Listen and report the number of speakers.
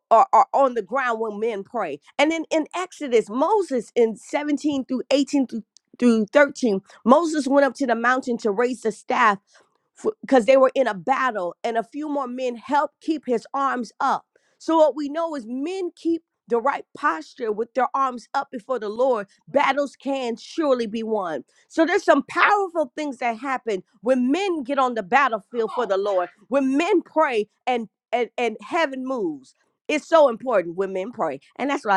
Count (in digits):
1